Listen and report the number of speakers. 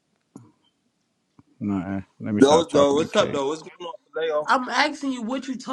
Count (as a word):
three